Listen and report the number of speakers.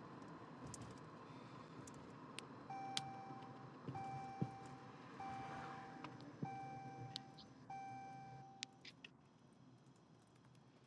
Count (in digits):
0